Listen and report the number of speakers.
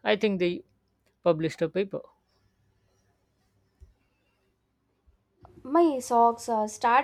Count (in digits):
2